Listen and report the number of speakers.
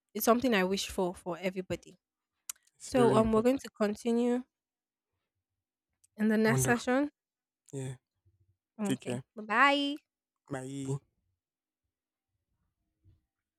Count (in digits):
2